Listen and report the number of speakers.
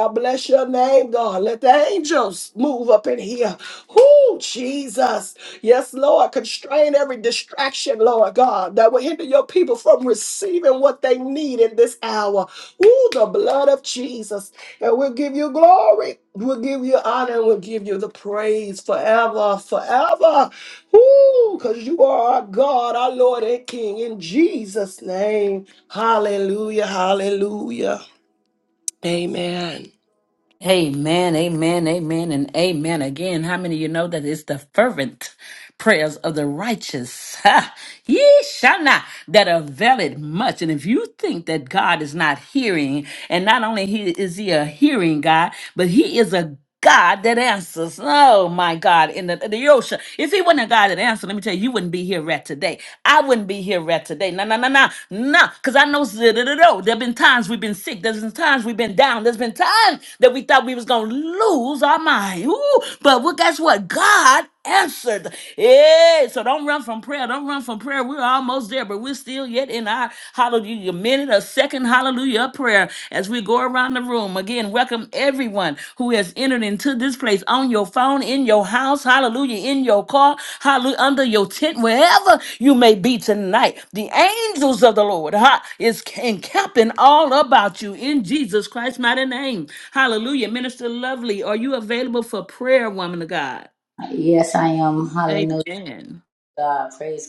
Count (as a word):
three